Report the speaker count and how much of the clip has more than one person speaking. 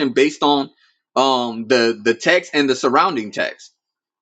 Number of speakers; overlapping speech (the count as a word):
one, no overlap